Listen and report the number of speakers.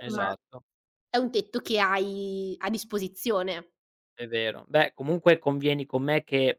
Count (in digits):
2